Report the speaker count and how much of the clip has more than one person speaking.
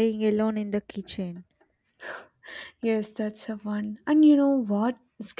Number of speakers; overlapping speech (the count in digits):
2, no overlap